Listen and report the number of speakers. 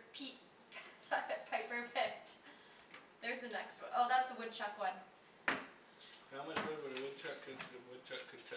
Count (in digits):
2